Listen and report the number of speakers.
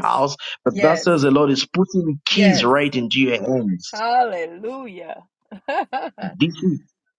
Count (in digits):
2